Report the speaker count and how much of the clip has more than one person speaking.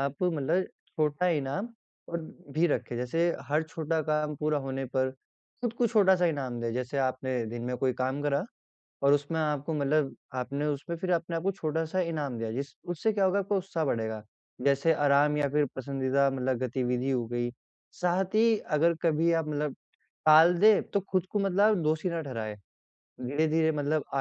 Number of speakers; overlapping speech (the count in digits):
1, no overlap